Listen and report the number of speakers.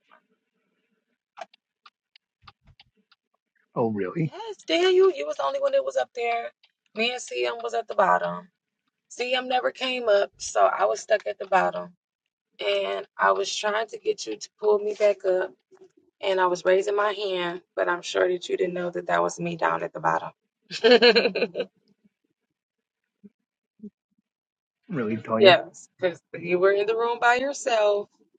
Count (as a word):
two